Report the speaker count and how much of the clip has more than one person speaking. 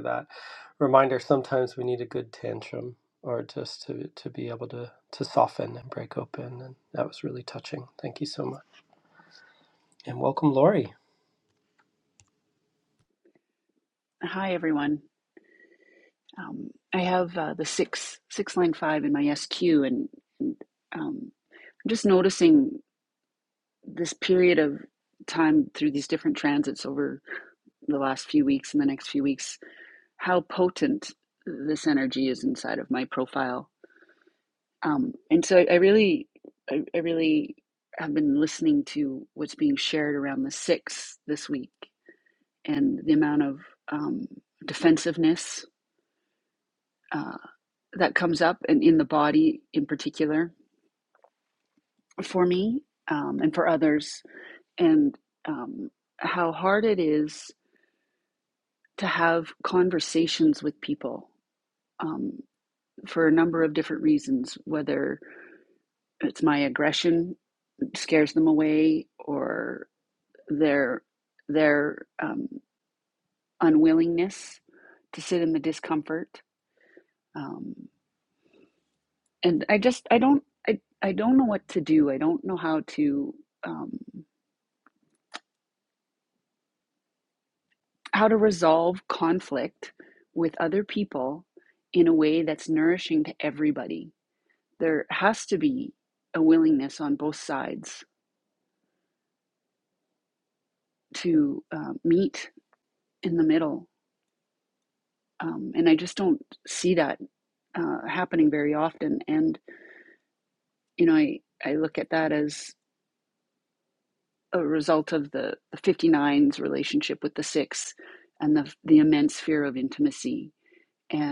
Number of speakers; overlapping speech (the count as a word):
two, no overlap